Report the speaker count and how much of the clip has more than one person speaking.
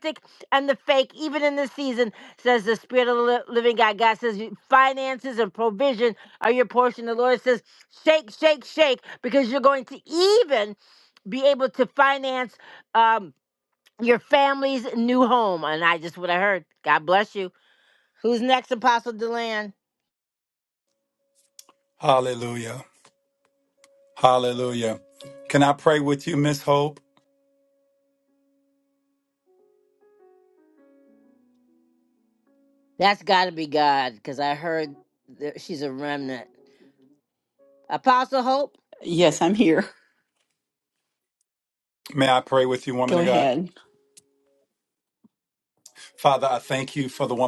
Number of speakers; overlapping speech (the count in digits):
3, about 1%